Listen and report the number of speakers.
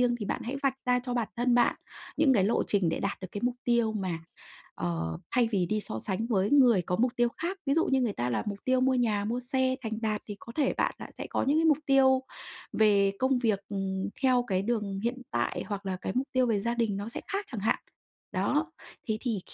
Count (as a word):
one